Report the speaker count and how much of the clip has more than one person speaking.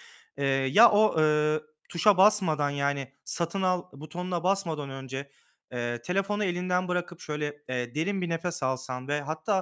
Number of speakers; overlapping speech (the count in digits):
1, no overlap